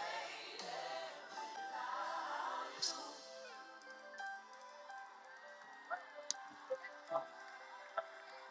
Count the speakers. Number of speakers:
0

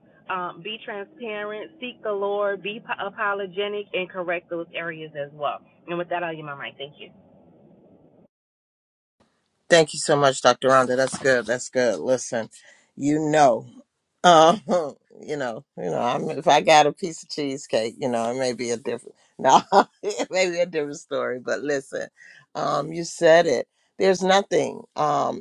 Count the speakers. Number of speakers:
2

